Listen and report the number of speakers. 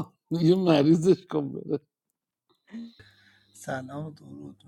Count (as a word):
two